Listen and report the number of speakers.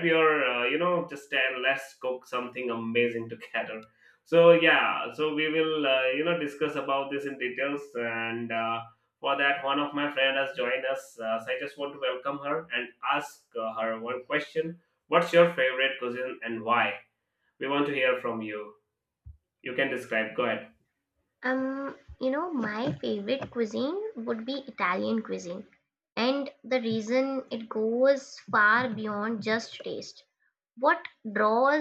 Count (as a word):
two